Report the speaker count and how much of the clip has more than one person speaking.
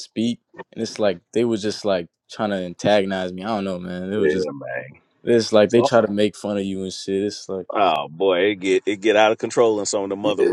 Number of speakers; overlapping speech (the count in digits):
2, about 7%